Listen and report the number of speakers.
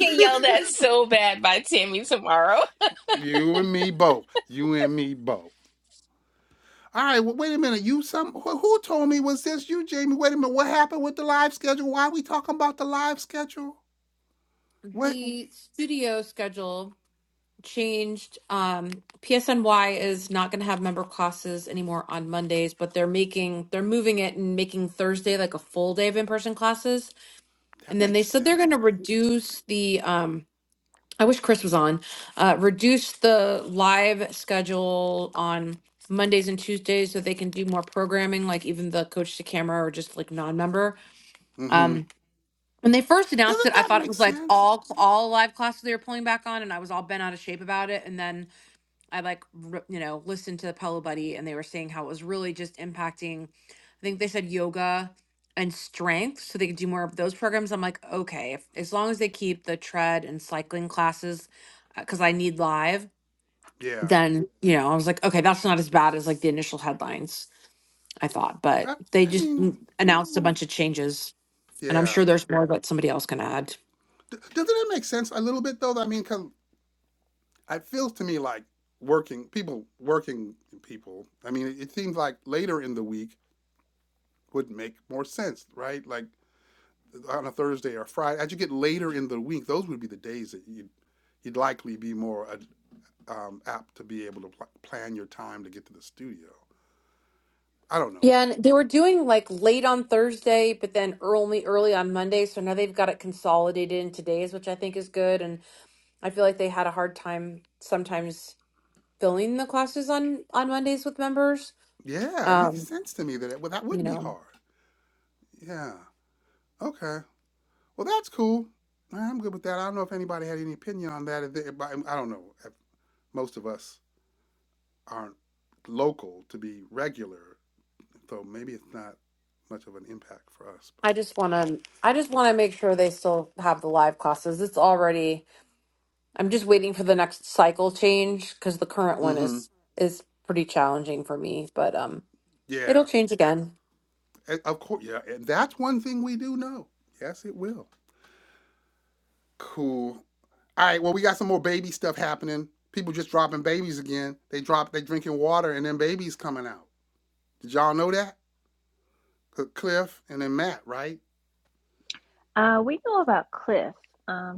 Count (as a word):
four